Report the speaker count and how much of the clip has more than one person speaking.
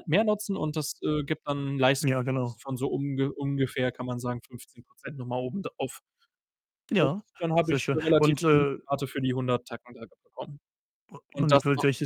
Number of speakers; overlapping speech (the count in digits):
2, about 11%